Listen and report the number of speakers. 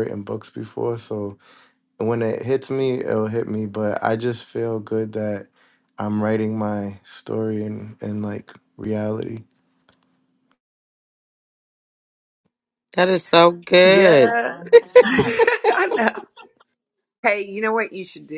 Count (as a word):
three